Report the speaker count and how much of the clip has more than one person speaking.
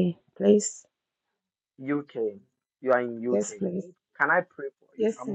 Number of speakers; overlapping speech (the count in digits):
2, about 12%